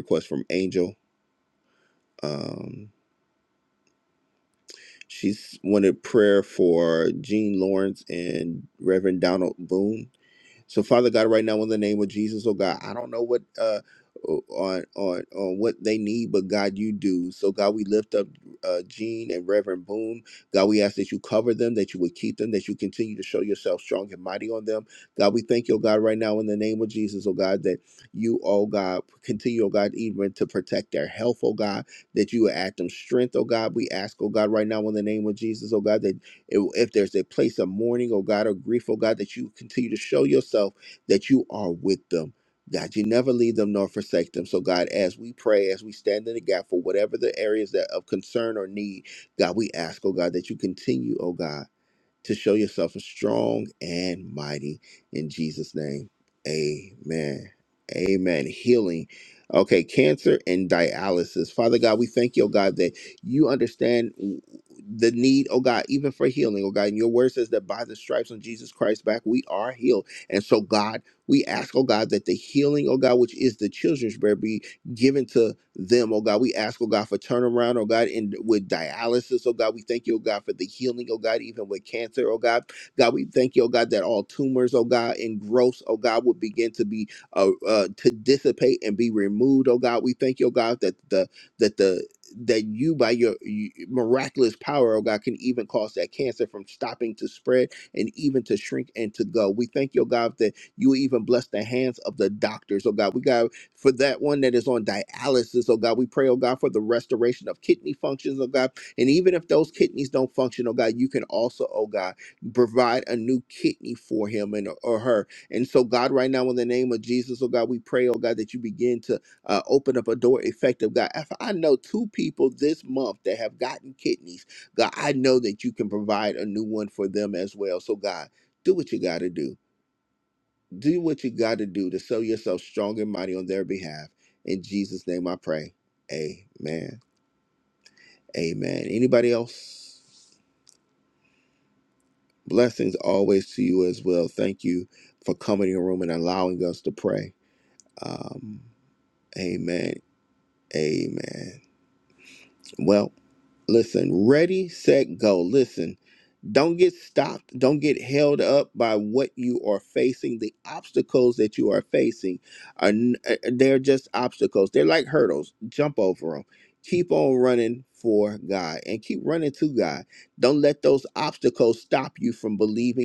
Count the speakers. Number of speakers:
1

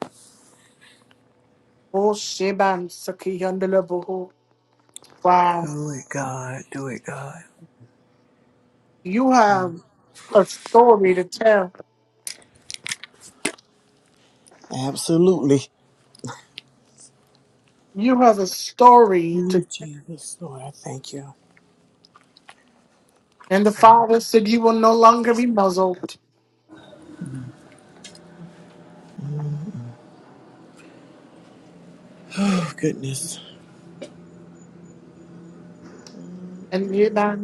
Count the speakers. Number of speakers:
2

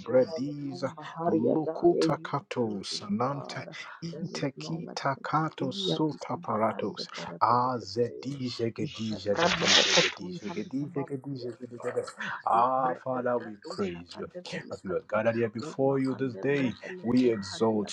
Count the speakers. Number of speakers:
2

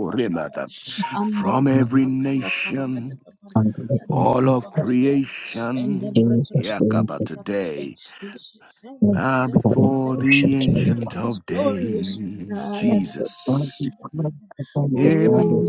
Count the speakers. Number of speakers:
3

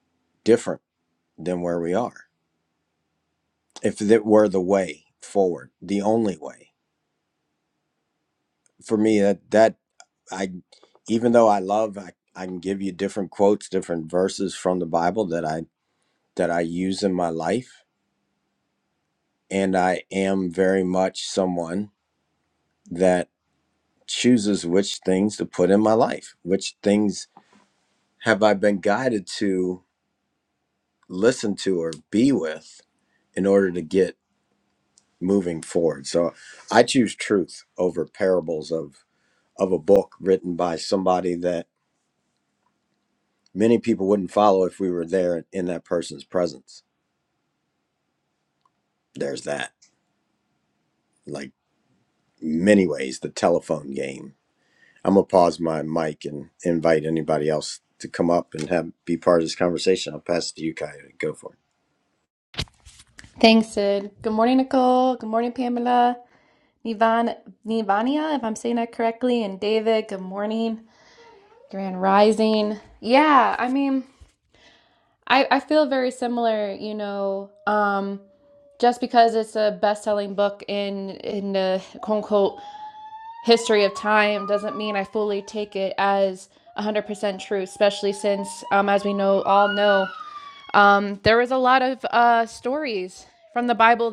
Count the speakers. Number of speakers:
2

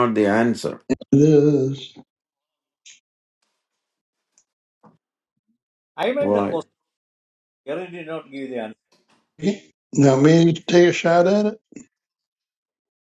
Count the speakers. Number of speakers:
3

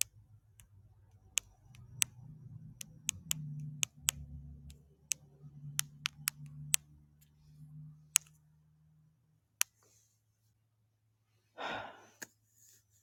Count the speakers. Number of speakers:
0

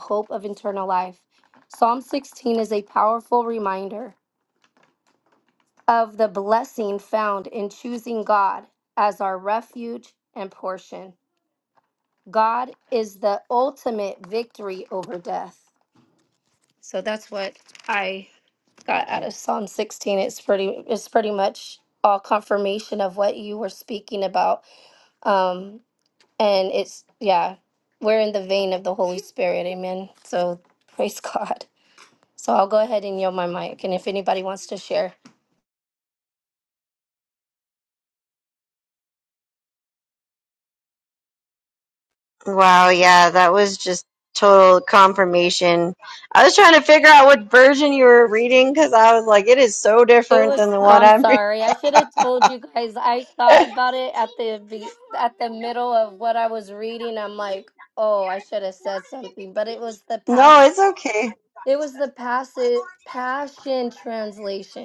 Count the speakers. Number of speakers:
2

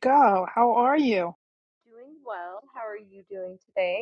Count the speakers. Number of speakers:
2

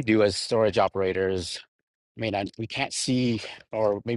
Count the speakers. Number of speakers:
1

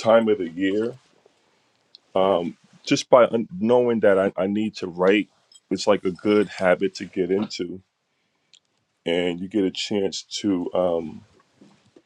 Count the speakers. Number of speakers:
1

